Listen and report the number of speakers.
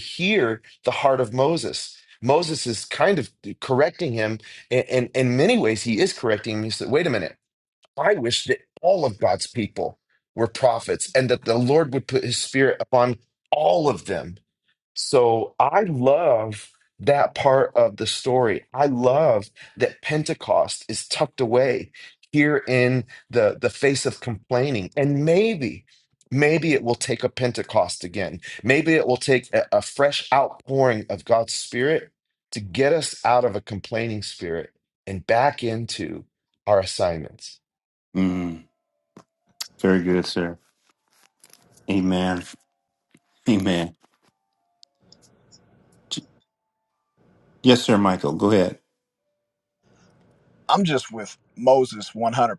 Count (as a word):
three